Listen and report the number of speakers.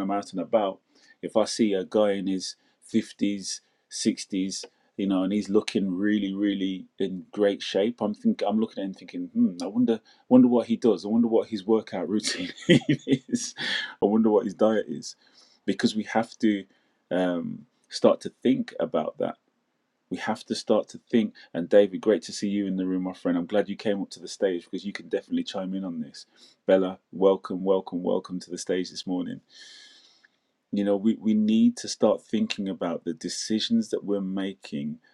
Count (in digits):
1